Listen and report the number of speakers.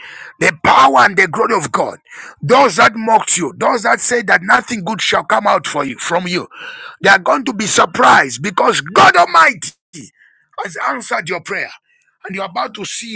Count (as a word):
one